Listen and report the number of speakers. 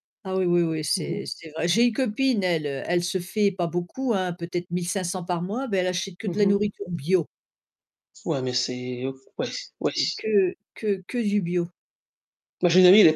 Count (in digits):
2